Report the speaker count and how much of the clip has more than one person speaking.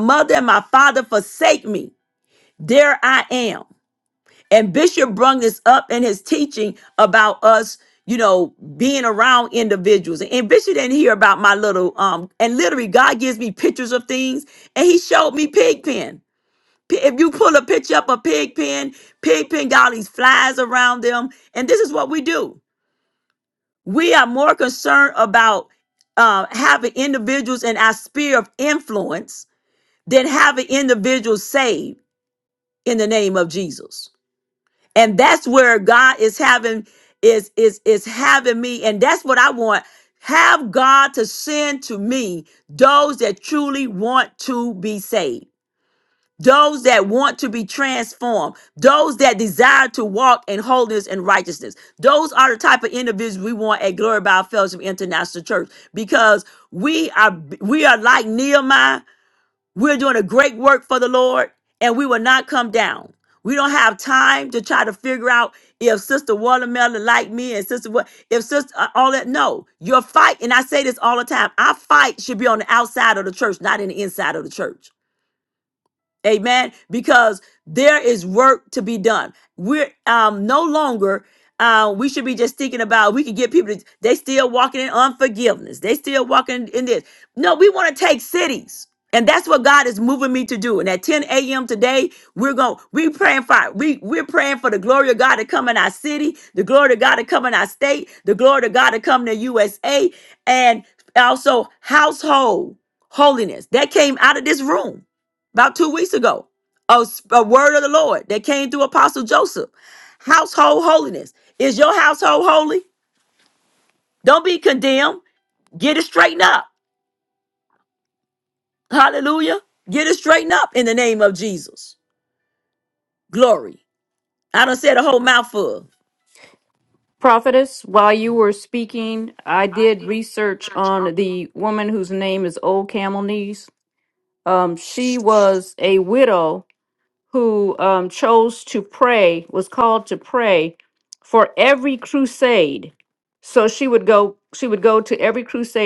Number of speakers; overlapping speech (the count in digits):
2, no overlap